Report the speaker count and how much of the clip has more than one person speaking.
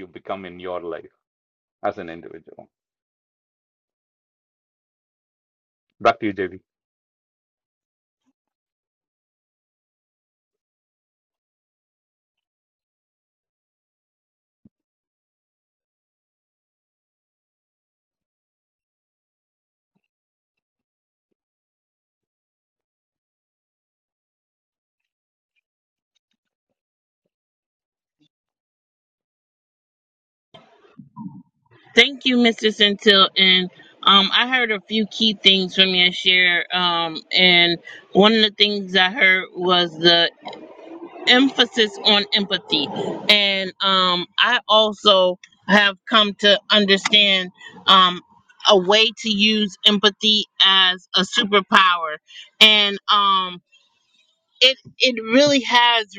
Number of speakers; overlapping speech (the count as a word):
two, no overlap